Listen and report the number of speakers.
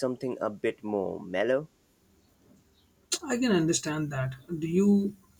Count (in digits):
2